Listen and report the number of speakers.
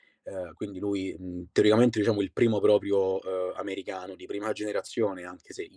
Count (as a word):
one